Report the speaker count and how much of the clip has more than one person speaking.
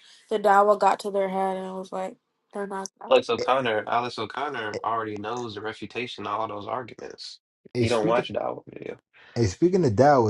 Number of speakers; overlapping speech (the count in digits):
3, about 6%